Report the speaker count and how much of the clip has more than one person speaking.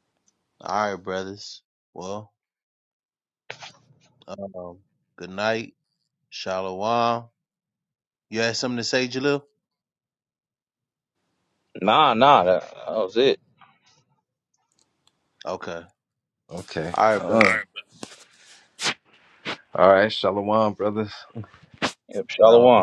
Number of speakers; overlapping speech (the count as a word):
three, about 2%